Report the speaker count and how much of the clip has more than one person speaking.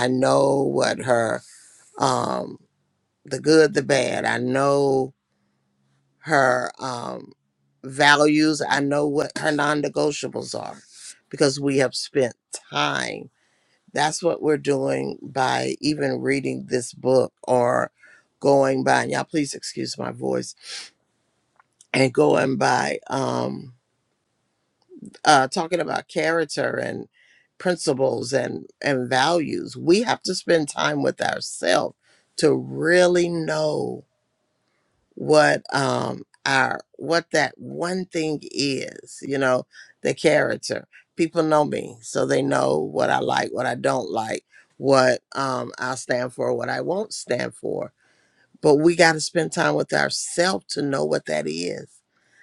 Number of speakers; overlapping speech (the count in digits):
1, no overlap